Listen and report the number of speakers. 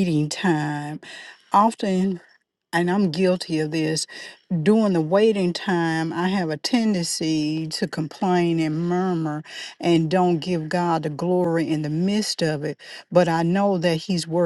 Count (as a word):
one